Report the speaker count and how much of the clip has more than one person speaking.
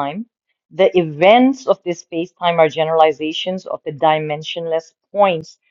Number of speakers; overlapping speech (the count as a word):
one, no overlap